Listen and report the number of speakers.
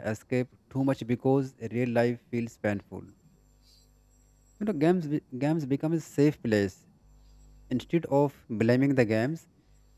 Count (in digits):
1